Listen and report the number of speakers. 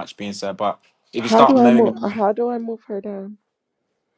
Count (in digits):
2